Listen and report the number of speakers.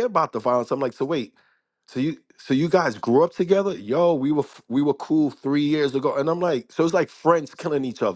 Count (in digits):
1